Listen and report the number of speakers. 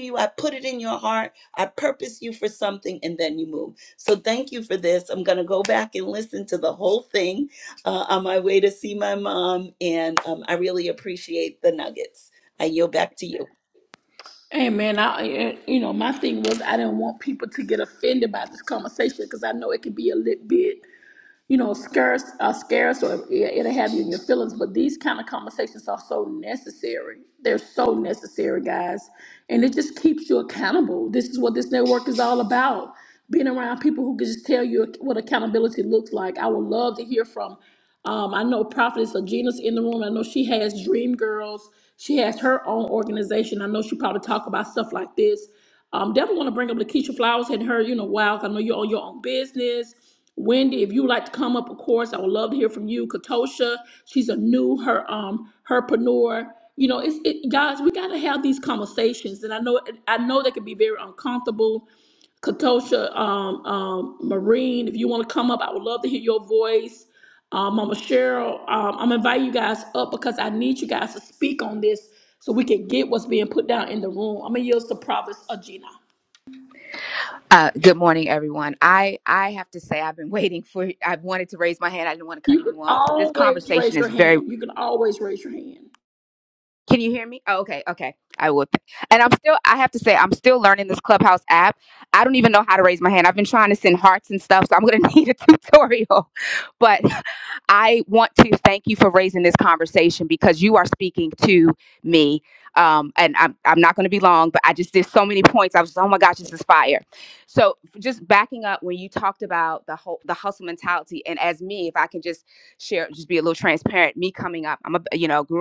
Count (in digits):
3